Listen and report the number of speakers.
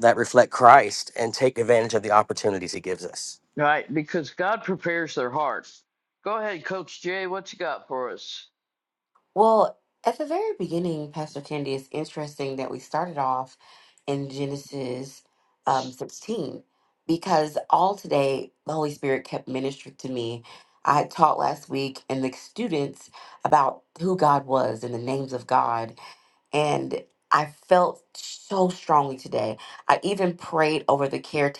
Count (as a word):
three